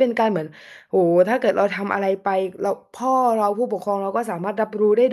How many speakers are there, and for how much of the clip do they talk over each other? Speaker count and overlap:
1, no overlap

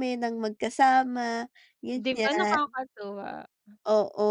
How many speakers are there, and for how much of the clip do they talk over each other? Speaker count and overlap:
2, about 15%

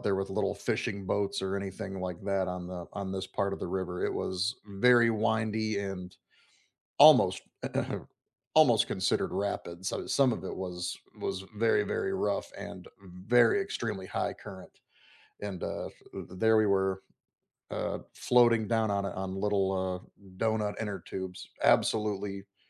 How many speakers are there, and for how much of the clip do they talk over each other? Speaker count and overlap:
1, no overlap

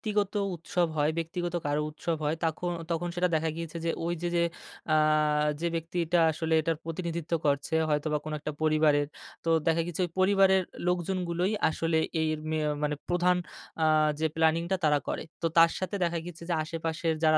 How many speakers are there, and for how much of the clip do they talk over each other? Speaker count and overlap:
1, no overlap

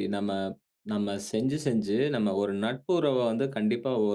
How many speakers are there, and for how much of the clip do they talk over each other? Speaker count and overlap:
1, no overlap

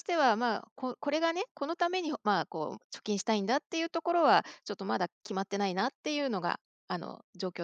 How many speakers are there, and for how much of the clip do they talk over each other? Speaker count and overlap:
1, no overlap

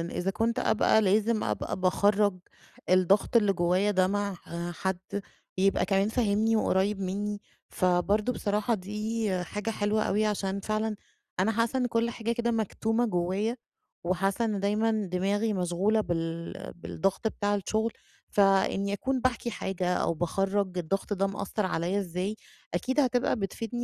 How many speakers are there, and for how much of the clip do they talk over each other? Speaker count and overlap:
1, no overlap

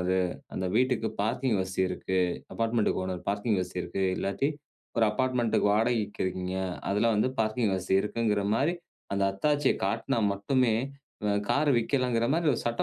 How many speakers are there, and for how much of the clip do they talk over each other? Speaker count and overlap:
1, no overlap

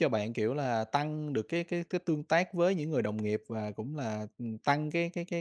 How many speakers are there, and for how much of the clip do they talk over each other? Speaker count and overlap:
1, no overlap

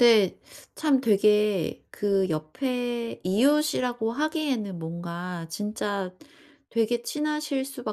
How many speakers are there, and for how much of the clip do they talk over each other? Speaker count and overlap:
1, no overlap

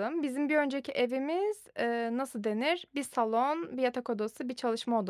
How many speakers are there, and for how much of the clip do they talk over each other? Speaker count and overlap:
1, no overlap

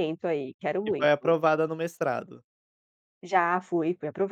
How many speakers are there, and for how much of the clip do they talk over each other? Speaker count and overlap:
2, about 11%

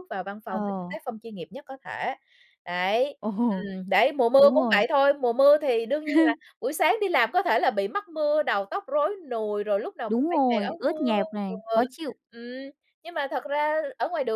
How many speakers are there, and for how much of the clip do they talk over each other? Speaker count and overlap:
2, about 18%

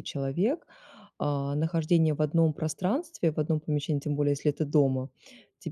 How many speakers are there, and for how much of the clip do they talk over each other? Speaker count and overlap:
1, no overlap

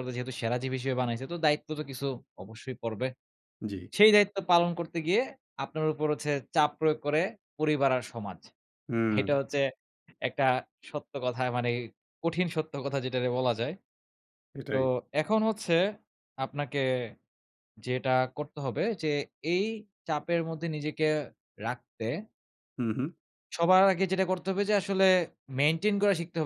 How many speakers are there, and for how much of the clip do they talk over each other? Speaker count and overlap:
2, about 1%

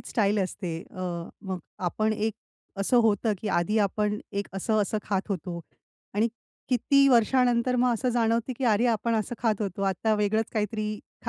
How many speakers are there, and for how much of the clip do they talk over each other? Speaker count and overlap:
1, no overlap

